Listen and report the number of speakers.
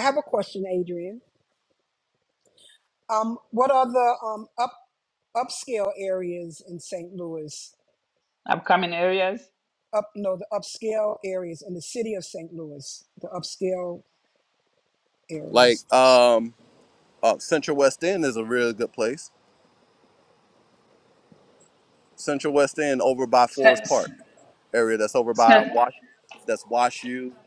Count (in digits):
3